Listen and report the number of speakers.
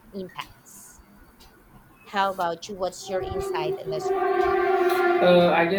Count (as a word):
two